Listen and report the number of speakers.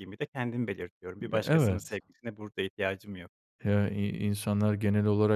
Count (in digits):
2